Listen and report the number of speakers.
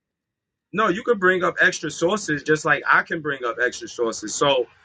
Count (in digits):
1